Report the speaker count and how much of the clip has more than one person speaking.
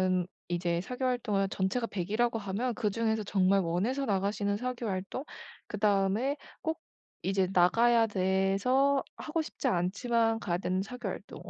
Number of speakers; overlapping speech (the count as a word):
one, no overlap